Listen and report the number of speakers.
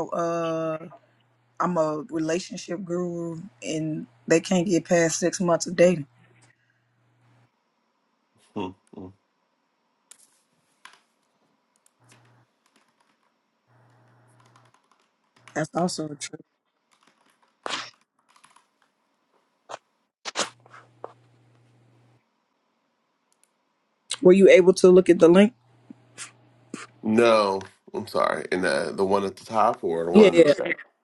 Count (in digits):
2